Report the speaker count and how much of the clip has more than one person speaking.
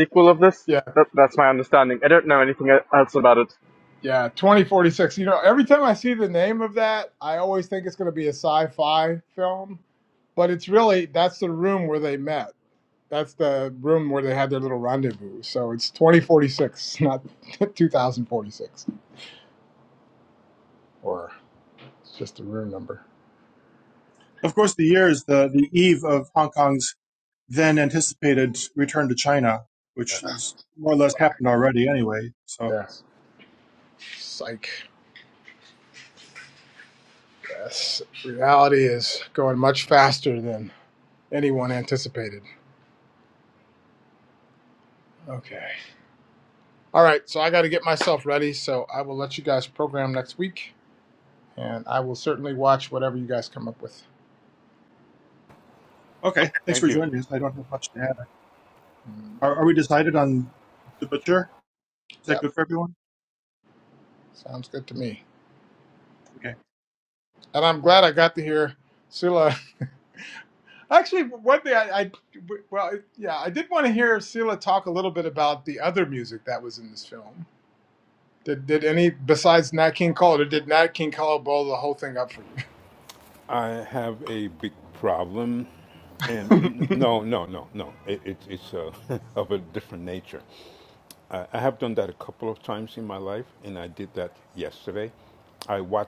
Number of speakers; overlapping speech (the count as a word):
four, about 1%